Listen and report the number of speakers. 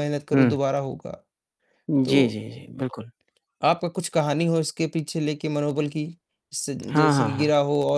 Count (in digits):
2